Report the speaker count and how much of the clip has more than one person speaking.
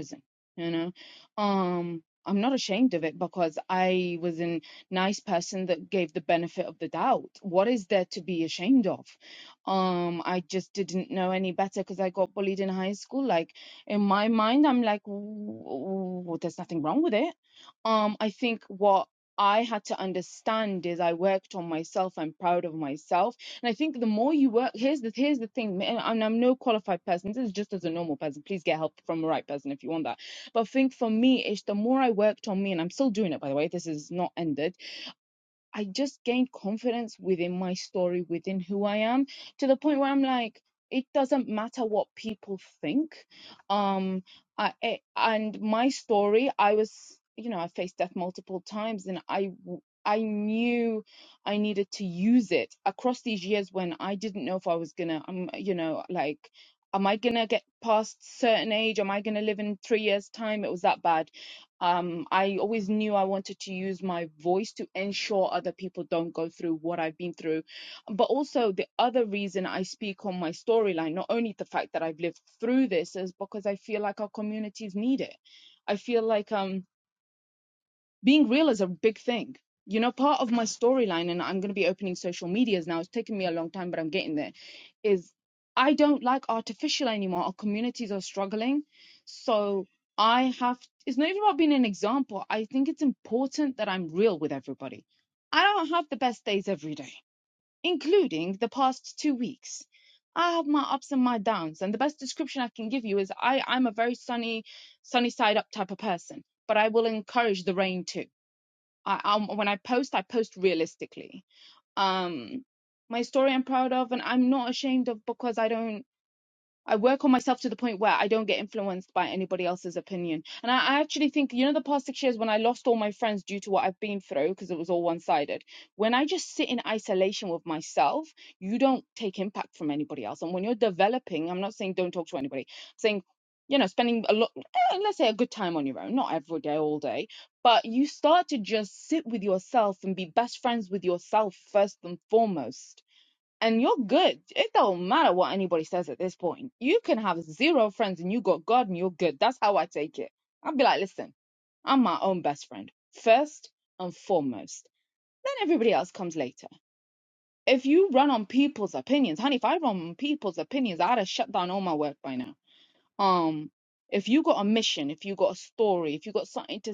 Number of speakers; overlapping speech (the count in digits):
1, no overlap